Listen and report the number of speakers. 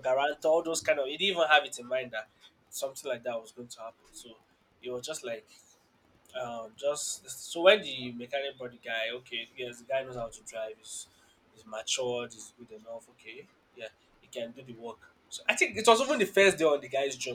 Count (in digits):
1